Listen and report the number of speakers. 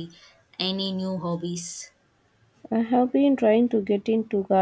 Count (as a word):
two